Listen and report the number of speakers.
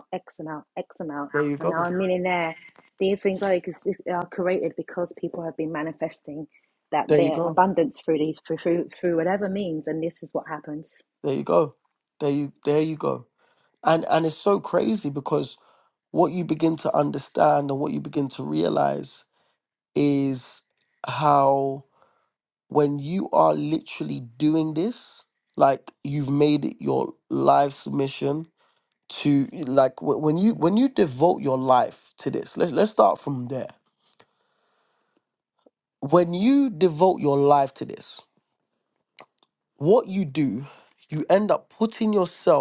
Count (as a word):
two